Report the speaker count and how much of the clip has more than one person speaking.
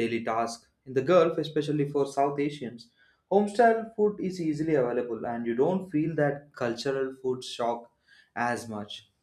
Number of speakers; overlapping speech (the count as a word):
one, no overlap